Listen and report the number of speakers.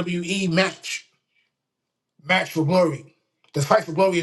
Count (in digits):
1